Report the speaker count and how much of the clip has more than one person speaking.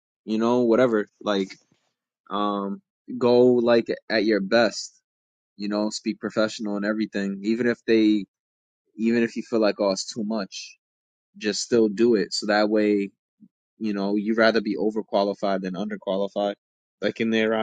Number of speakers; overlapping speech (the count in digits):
1, no overlap